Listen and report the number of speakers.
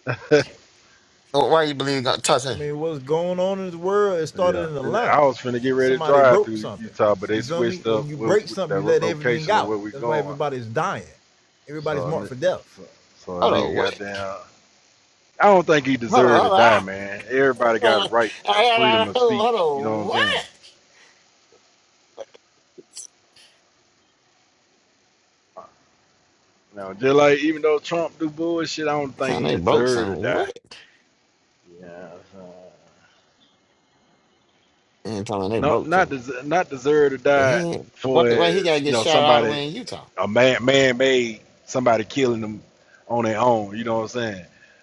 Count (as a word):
three